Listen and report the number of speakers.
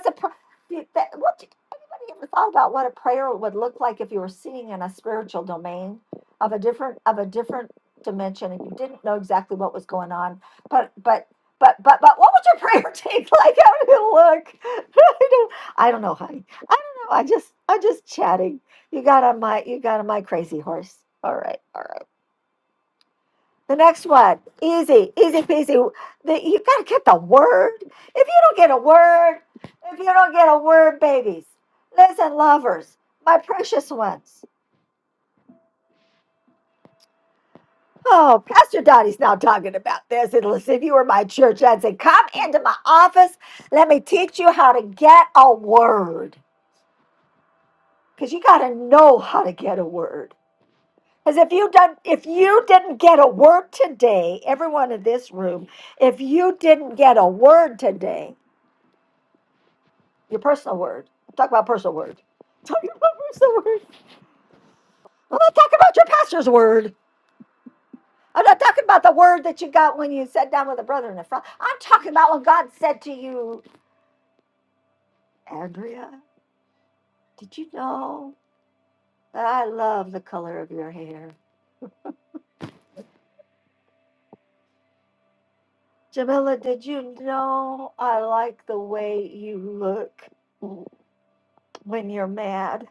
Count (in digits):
1